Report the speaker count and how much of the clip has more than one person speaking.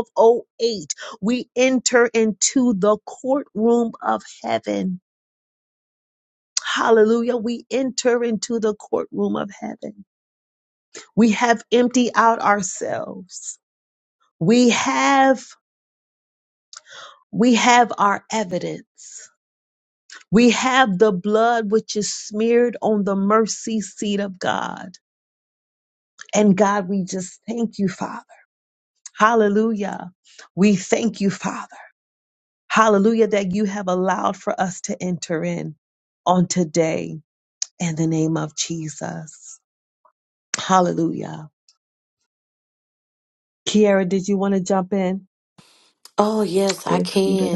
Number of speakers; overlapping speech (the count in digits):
2, about 1%